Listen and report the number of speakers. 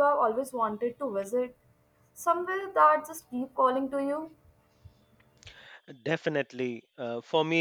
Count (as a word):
two